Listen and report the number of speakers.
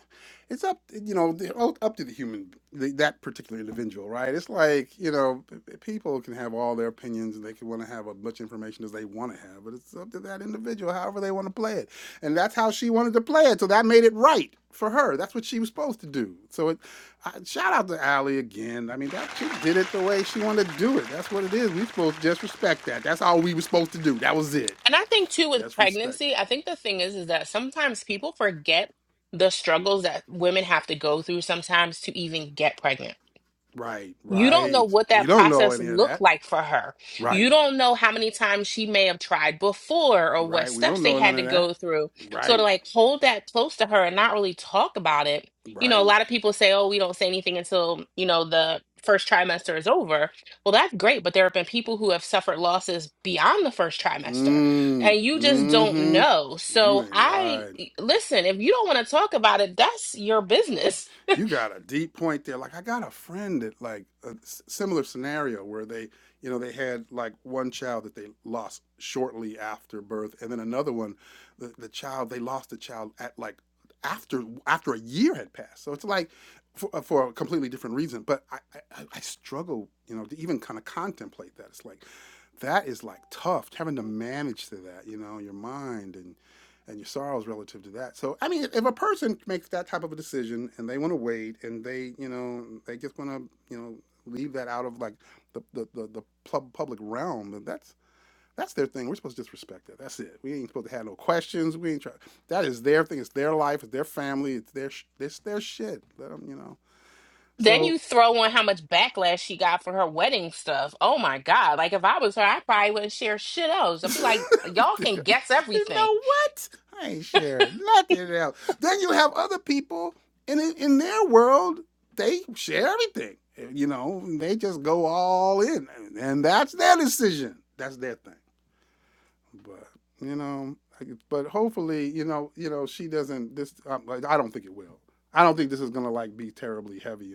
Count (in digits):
2